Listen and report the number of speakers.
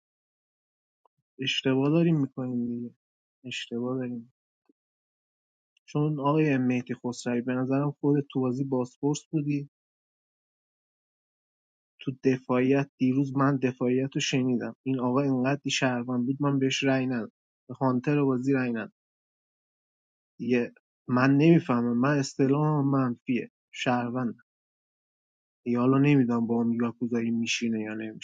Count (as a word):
one